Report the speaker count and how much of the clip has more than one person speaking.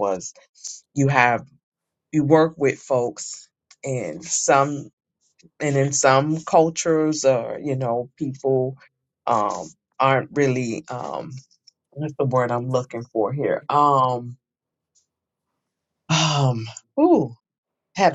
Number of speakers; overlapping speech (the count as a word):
one, no overlap